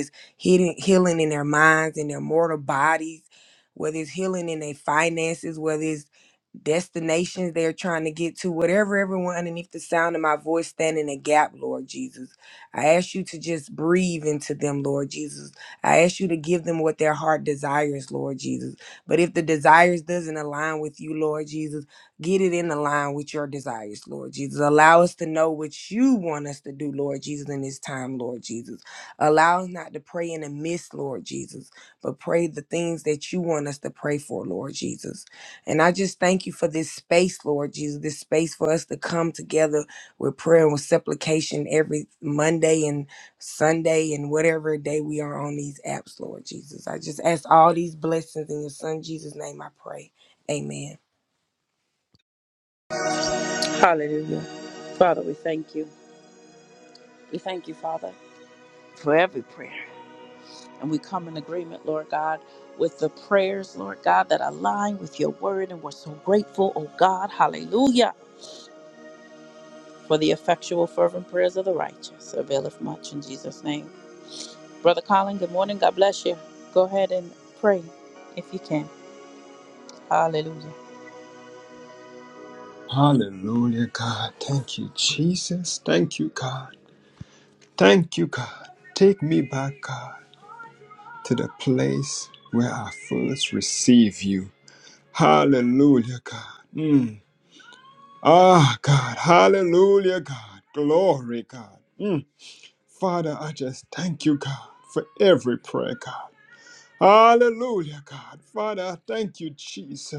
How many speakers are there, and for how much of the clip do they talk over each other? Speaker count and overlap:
3, no overlap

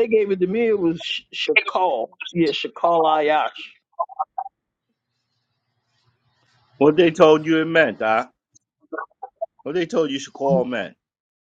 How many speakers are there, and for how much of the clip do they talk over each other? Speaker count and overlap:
2, no overlap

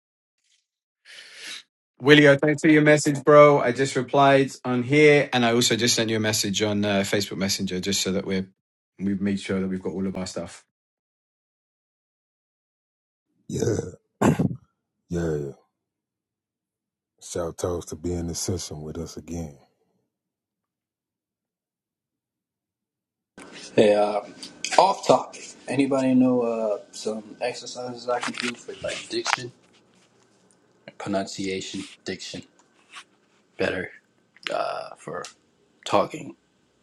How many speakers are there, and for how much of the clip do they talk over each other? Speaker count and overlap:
3, no overlap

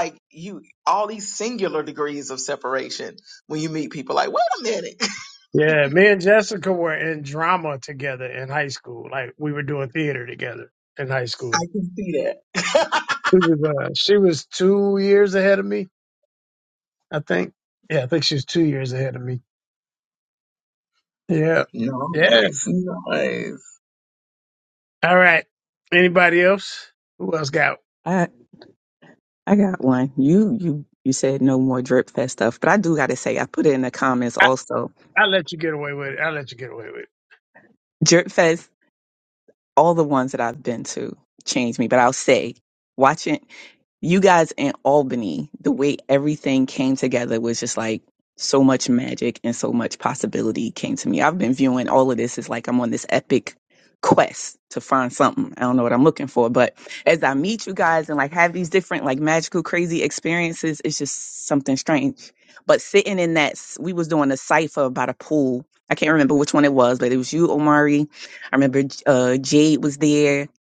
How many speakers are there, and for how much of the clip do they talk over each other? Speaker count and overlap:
3, about 1%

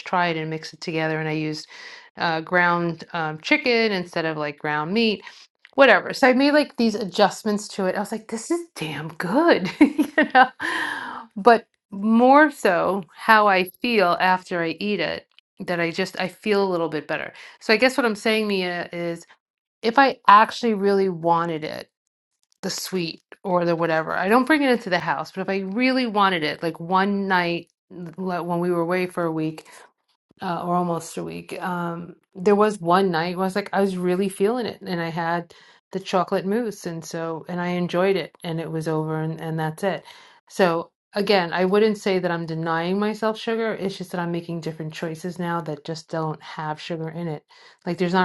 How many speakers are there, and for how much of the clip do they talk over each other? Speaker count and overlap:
1, no overlap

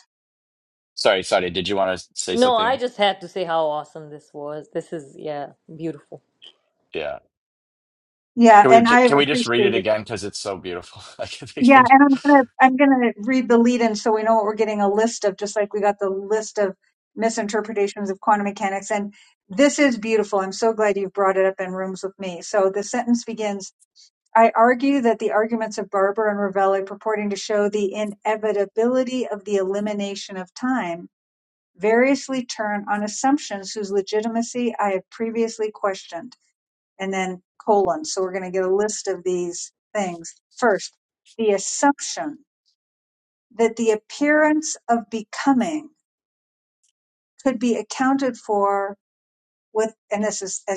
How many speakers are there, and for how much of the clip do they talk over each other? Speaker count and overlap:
3, about 4%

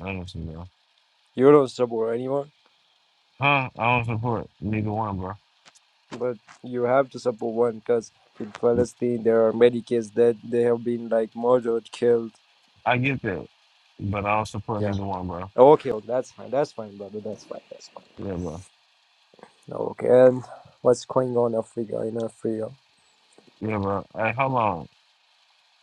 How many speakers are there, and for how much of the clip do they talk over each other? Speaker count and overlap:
2, about 1%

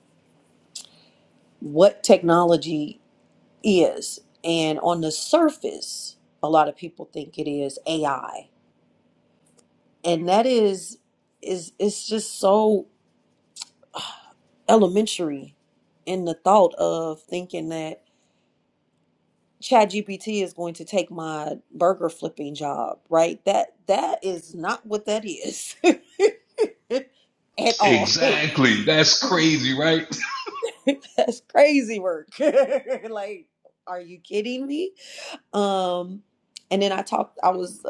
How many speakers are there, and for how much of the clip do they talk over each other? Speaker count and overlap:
2, about 1%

